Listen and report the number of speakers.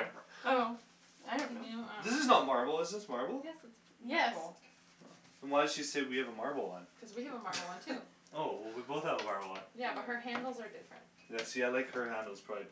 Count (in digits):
3